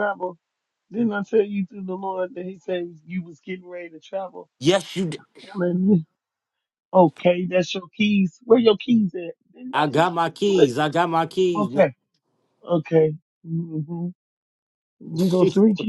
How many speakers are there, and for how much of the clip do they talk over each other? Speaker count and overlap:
two, about 4%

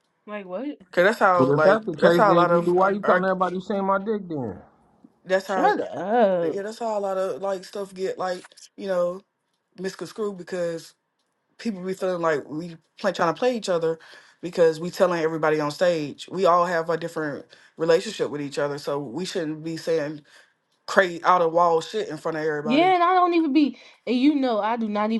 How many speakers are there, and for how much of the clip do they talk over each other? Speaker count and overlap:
three, about 10%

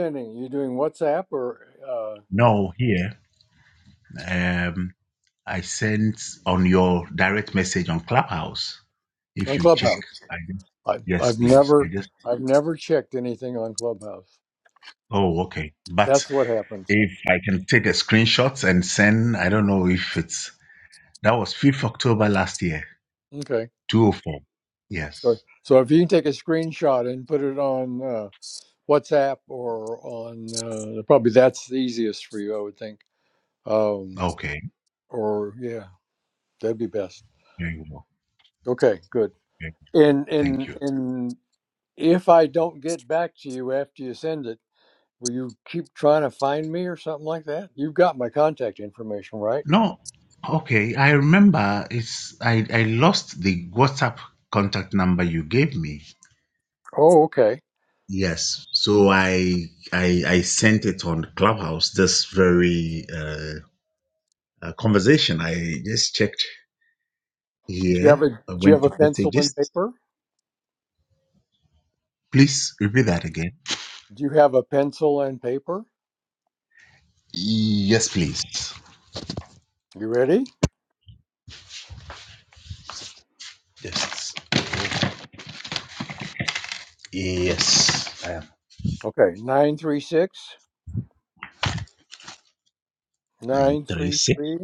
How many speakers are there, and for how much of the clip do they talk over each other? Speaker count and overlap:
two, about 5%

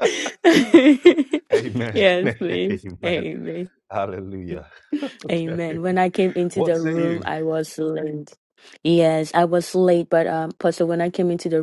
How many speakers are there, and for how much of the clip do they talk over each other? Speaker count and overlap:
two, about 21%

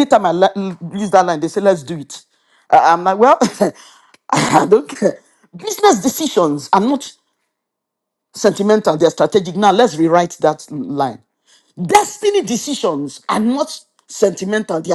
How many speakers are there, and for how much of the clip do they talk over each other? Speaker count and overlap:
one, no overlap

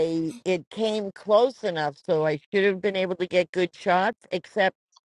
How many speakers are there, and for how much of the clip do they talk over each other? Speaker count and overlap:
one, no overlap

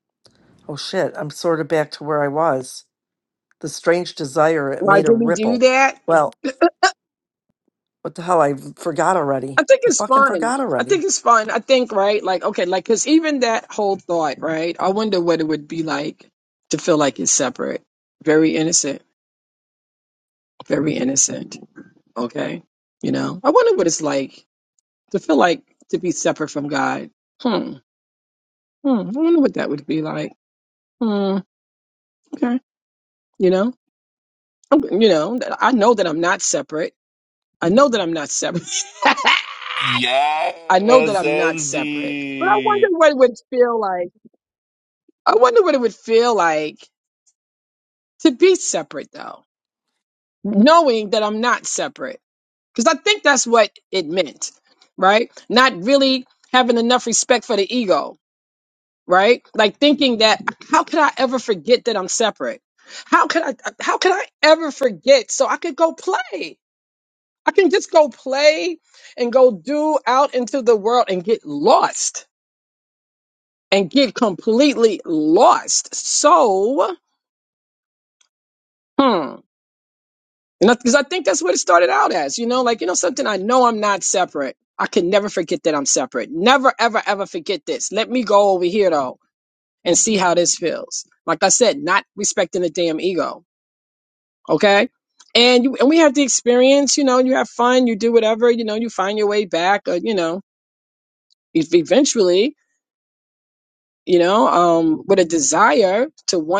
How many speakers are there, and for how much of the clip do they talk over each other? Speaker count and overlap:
three, about 3%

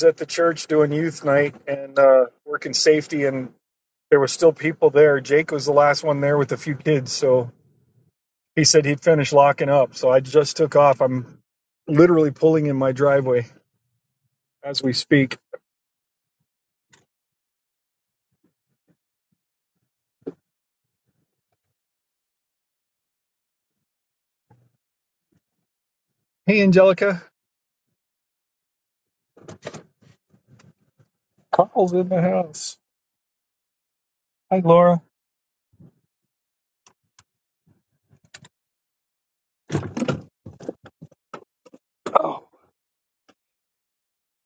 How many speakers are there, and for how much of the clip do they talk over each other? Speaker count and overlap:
one, no overlap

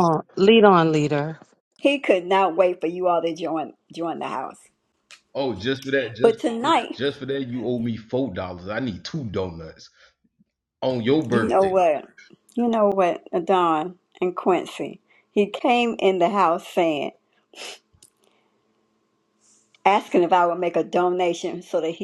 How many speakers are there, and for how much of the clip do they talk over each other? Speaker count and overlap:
three, about 5%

